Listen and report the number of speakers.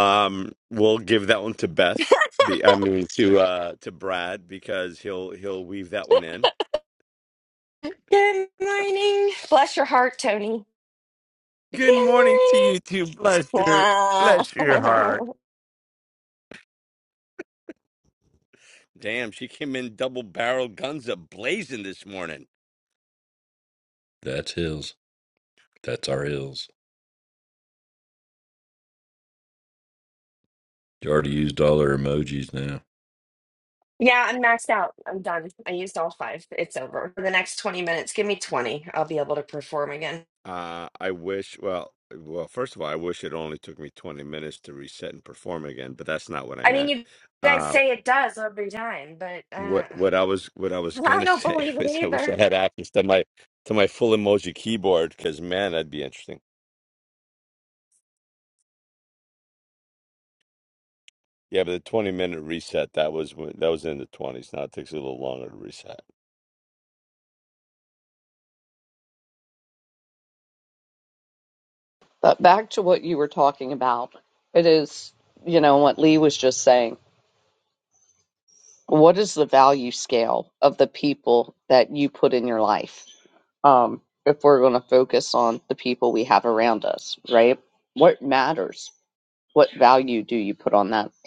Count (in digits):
4